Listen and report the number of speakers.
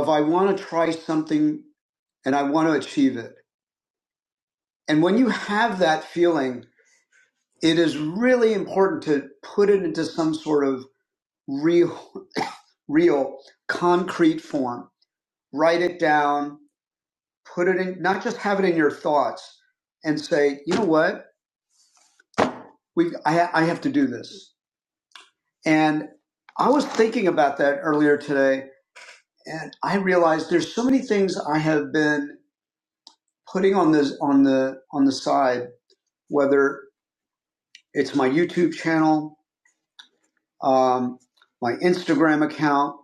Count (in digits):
1